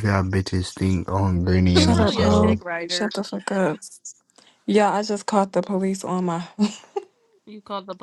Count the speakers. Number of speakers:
three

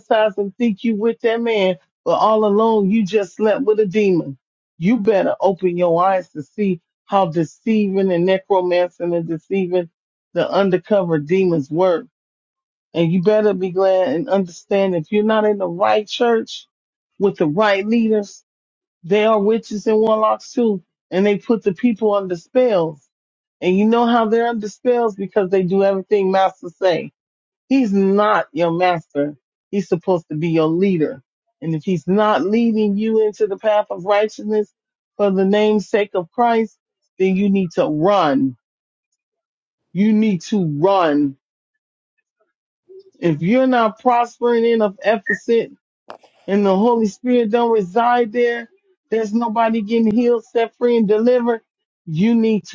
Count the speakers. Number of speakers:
one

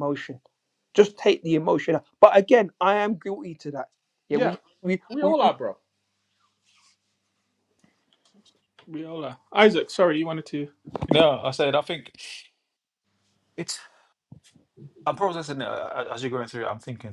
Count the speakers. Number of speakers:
three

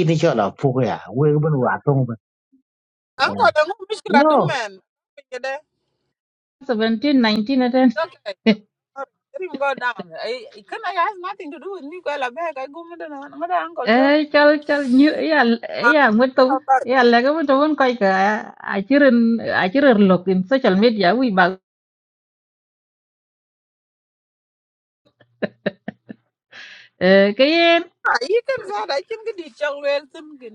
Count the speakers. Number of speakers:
three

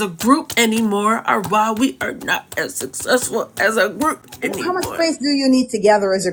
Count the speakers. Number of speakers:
two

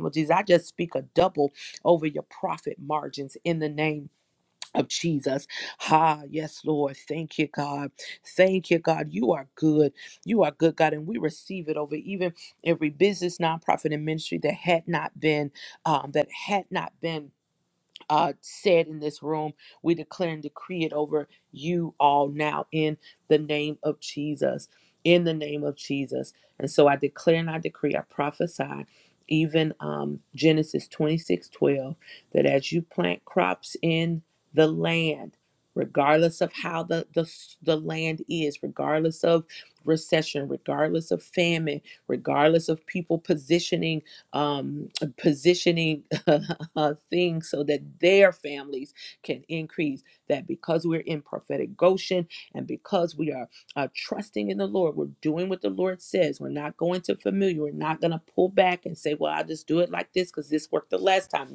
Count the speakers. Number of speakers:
one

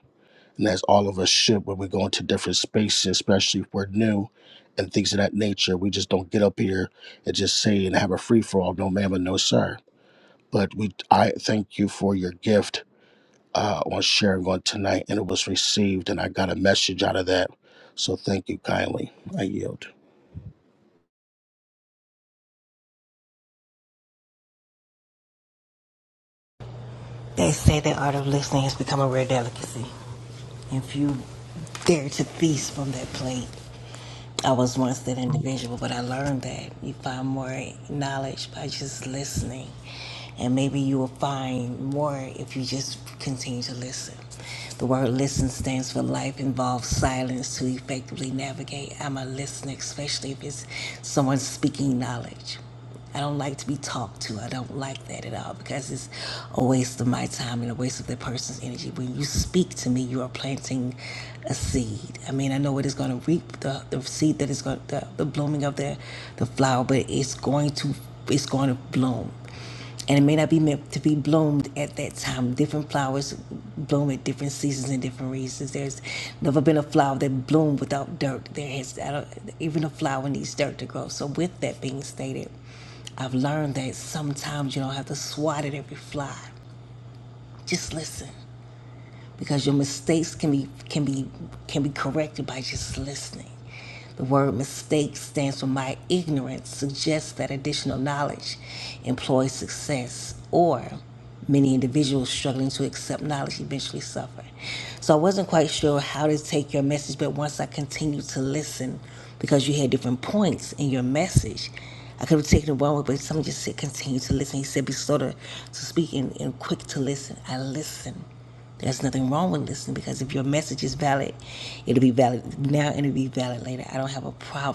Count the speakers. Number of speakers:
two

